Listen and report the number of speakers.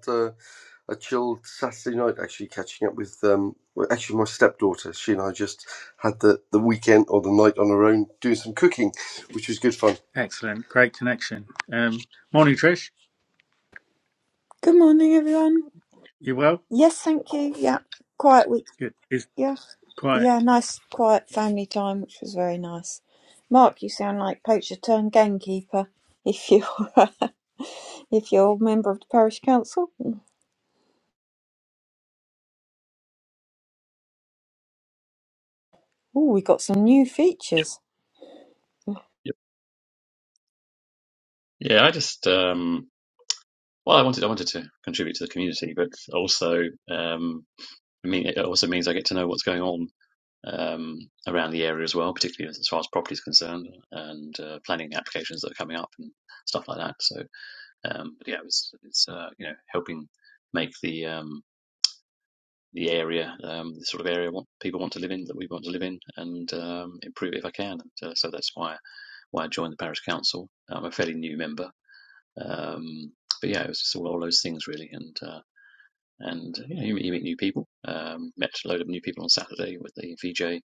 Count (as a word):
four